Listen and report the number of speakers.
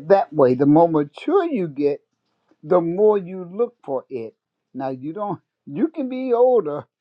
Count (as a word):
one